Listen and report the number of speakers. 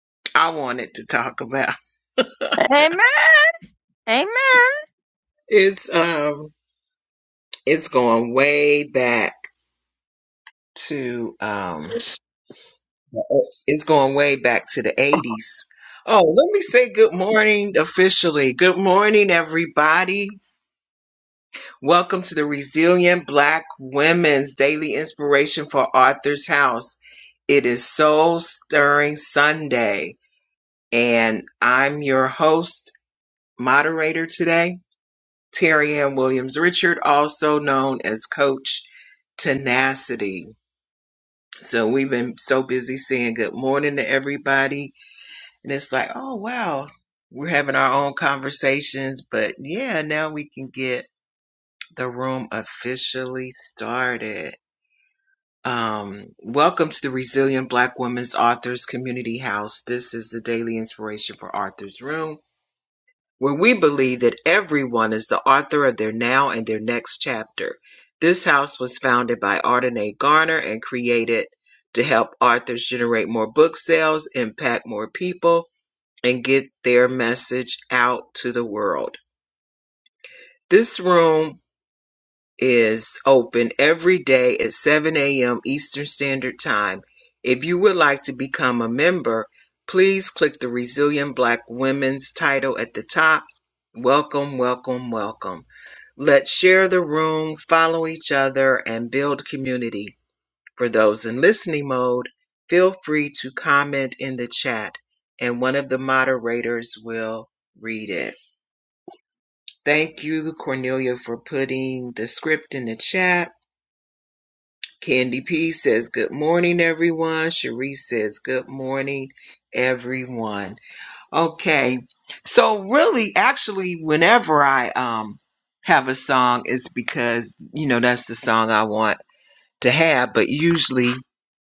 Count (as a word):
two